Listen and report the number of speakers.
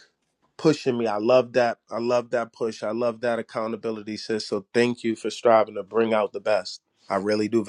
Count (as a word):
one